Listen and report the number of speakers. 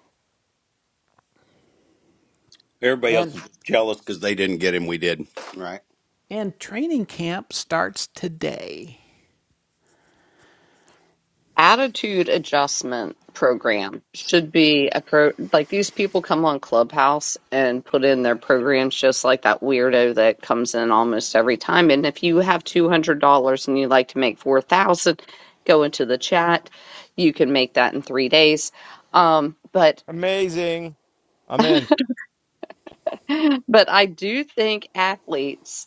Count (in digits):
4